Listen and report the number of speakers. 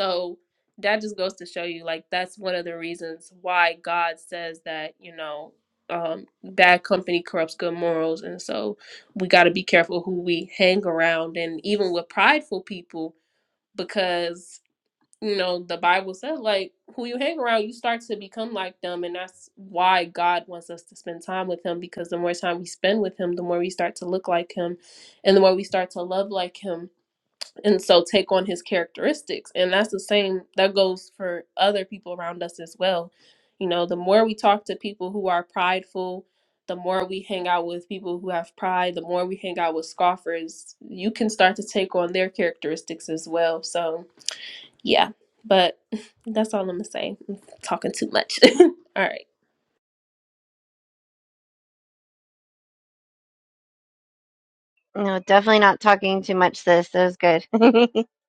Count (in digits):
2